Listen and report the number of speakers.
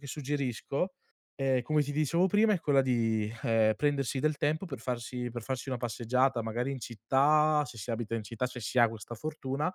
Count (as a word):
one